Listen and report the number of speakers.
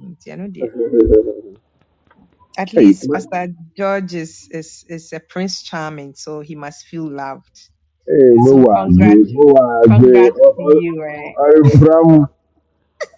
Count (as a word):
two